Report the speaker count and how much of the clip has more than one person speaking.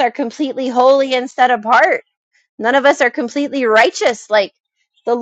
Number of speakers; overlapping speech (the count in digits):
1, no overlap